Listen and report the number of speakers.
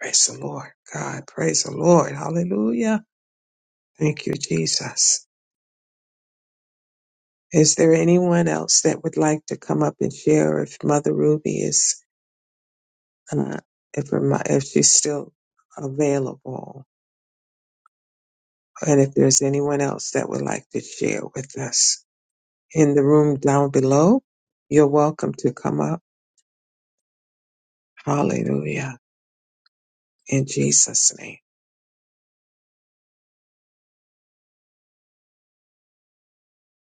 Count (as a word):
one